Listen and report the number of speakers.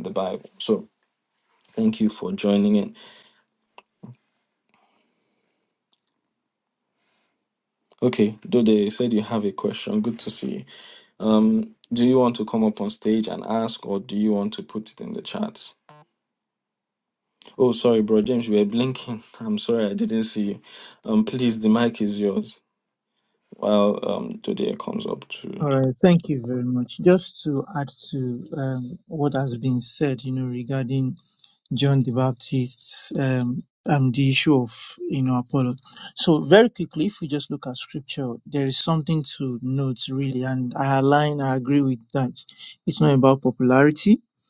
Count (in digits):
2